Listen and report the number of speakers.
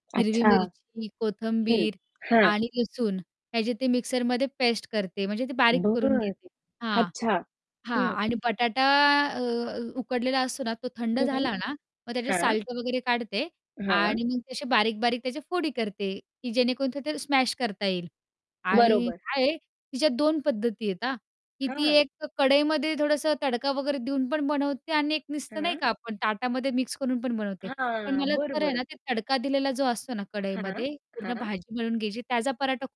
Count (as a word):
two